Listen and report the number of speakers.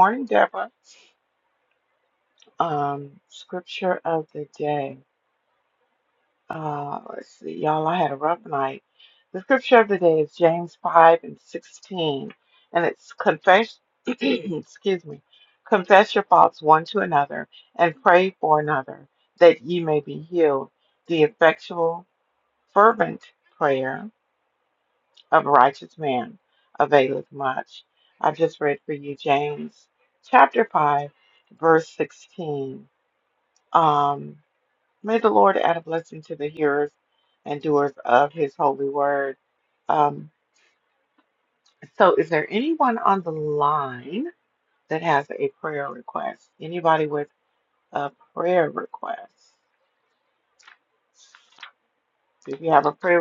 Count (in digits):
1